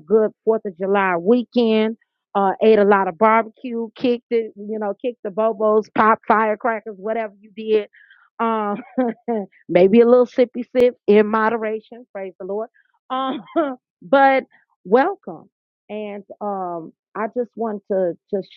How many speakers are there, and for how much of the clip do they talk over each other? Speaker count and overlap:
one, no overlap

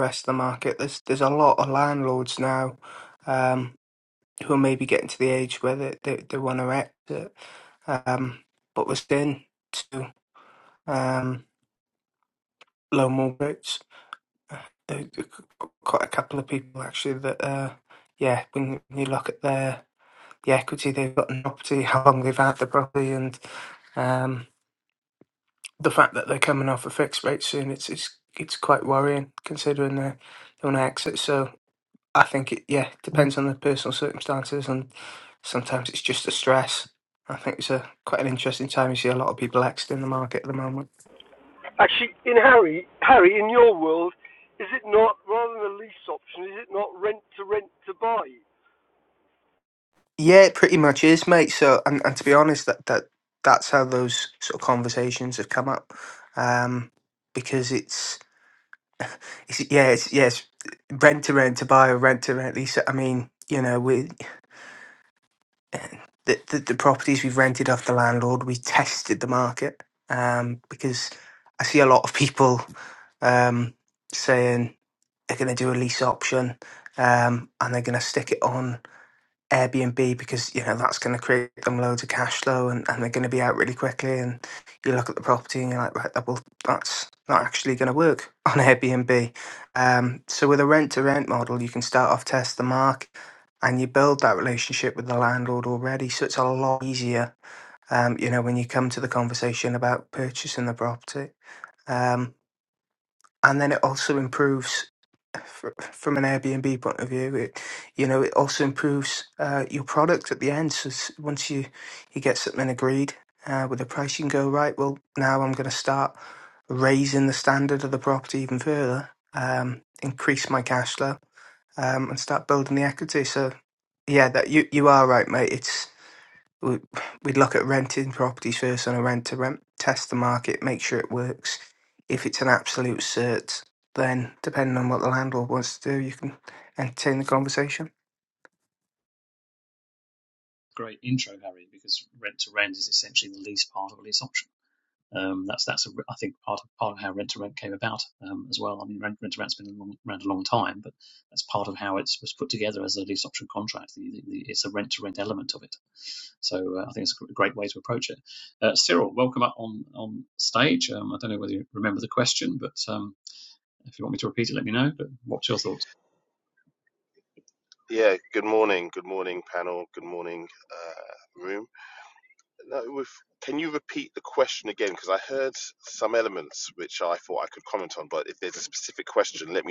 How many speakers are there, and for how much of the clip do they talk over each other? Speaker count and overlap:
four, no overlap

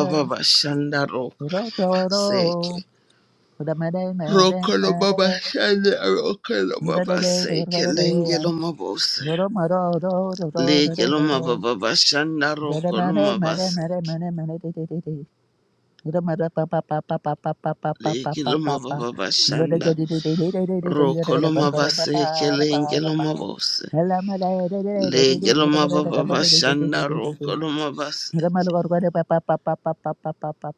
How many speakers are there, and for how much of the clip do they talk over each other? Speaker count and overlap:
two, about 39%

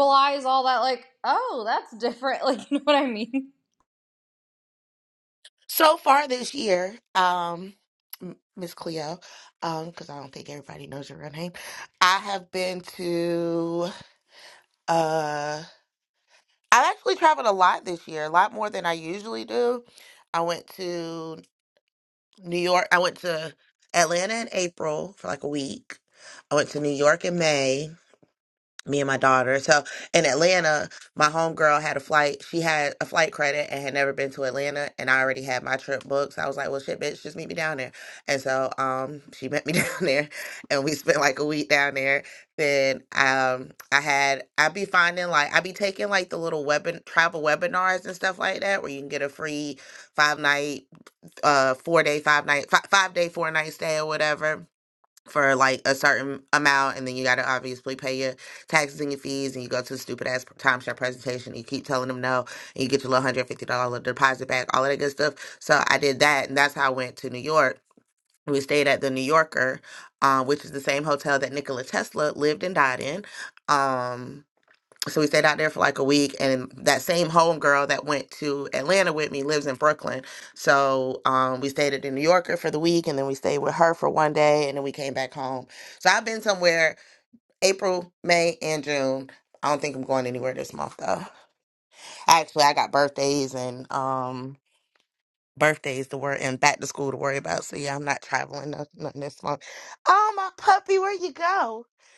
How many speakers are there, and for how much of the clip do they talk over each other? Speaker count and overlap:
two, no overlap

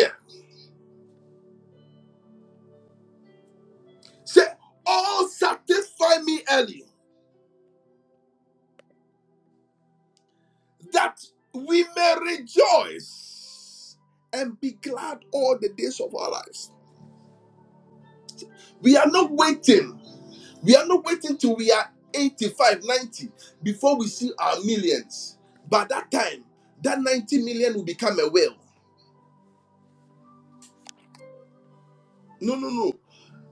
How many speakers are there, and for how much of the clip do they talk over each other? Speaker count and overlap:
one, no overlap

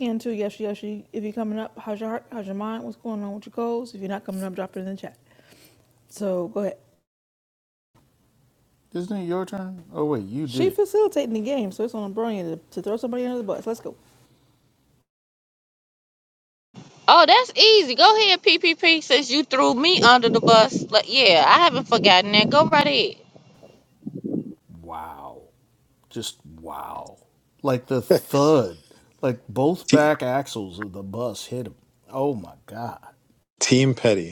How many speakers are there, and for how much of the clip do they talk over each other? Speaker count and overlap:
four, about 2%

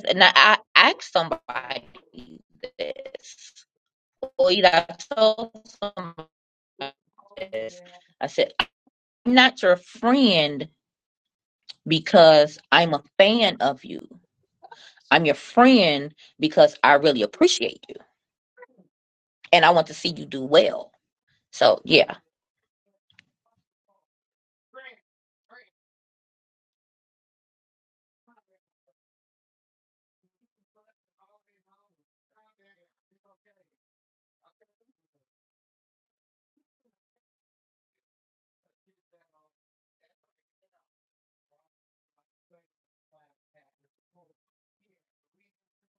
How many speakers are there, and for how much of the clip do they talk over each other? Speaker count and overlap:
one, no overlap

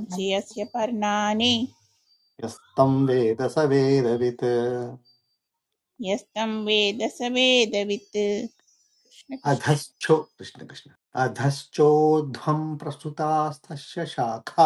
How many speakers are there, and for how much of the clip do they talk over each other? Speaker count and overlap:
two, about 1%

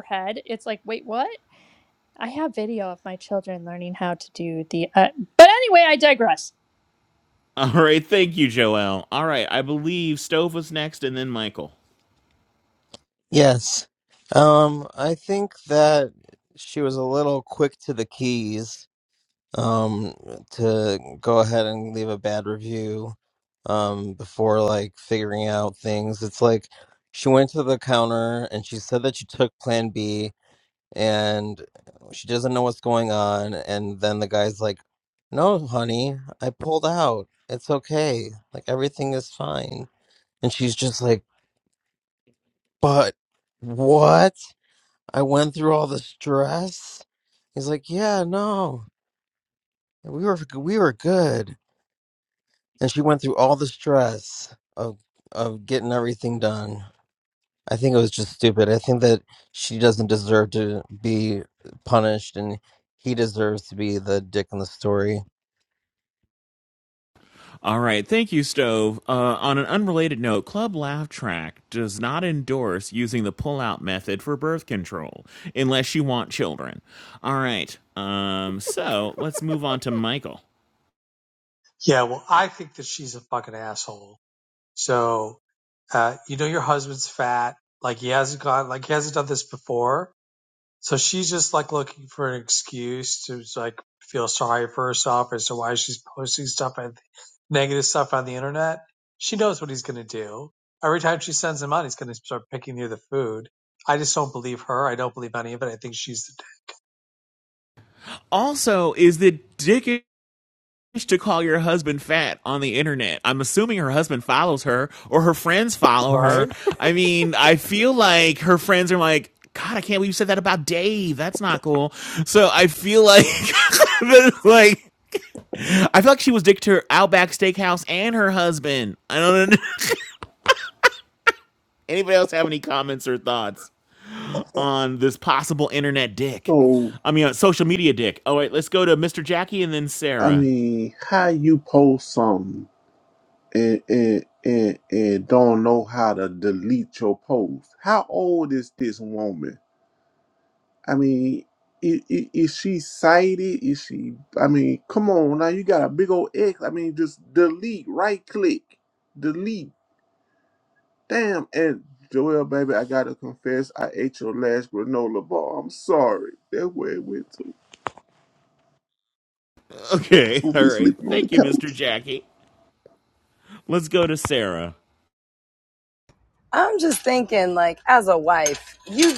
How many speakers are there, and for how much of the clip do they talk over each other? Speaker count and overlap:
six, about 1%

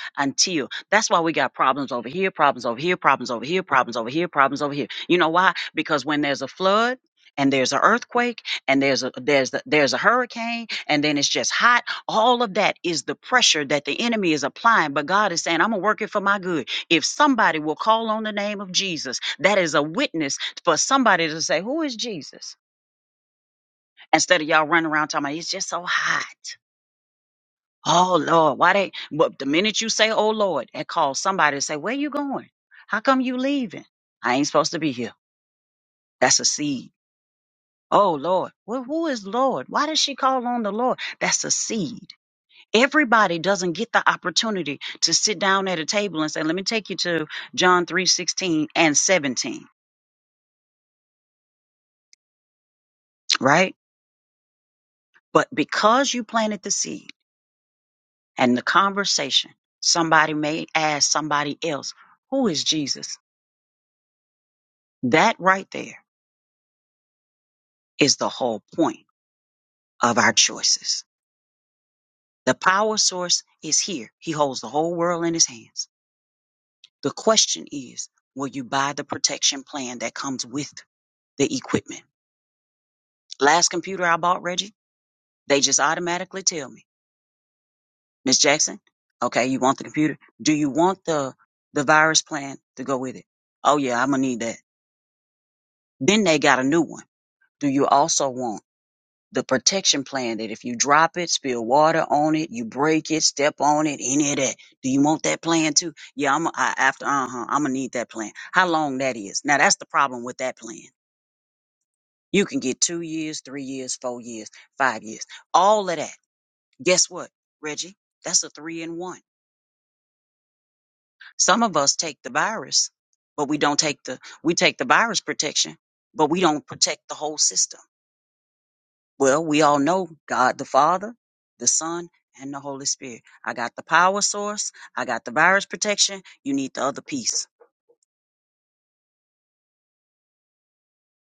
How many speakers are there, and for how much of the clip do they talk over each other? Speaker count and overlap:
one, no overlap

